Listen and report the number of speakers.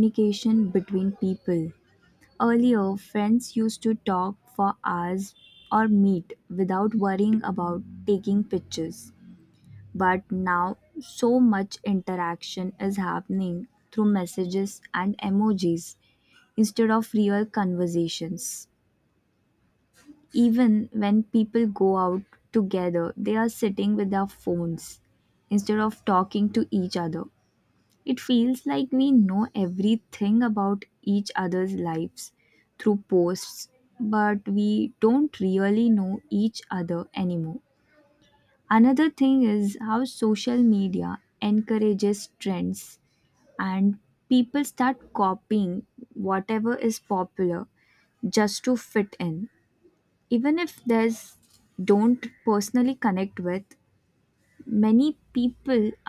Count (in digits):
1